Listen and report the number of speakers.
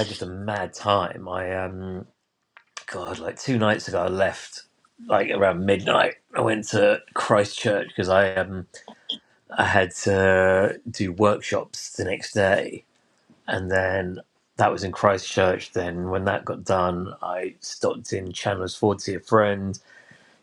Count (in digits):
1